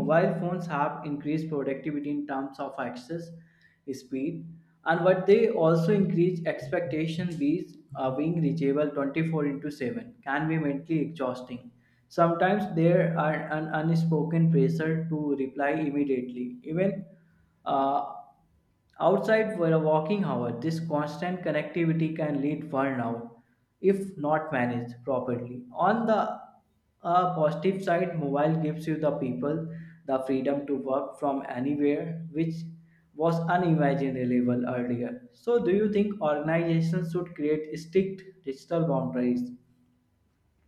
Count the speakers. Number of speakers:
one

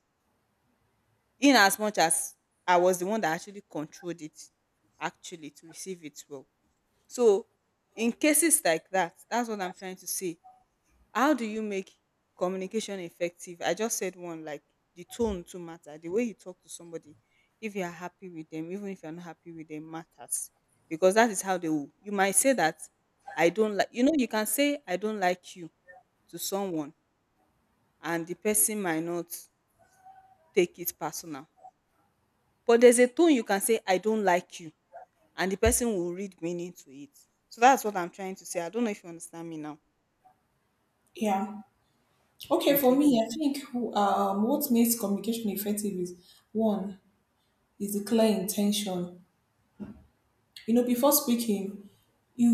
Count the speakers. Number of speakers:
two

